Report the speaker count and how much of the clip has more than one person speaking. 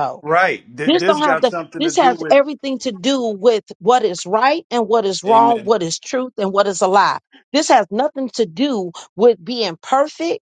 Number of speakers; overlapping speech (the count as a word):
two, about 19%